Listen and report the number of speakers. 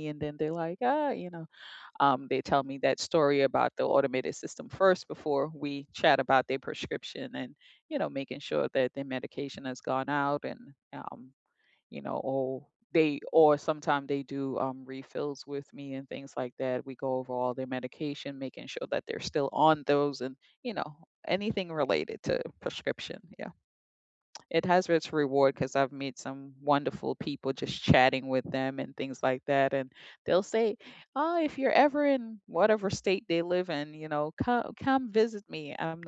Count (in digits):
1